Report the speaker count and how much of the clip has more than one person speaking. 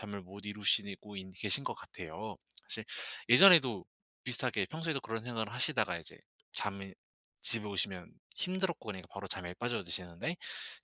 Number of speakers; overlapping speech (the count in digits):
1, no overlap